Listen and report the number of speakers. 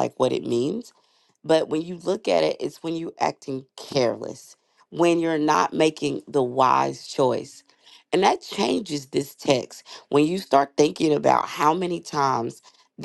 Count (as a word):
one